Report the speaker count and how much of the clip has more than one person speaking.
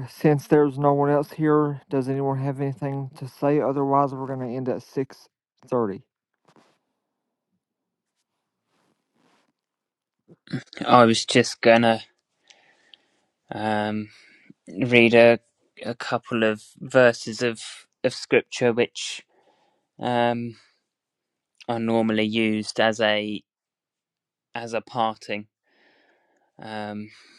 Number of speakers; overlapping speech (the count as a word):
two, no overlap